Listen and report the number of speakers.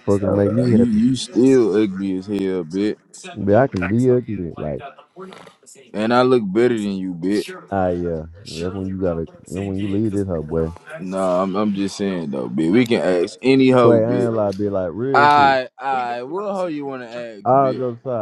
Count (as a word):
two